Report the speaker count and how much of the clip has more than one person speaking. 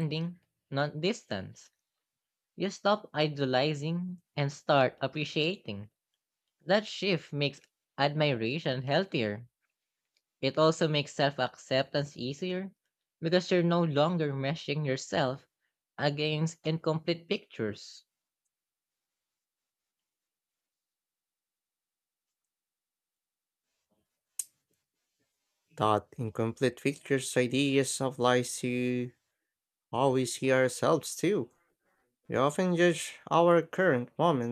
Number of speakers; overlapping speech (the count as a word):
two, no overlap